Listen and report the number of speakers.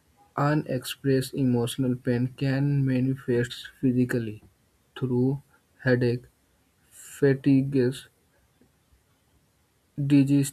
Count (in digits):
1